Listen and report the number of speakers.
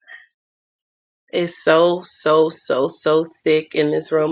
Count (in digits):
1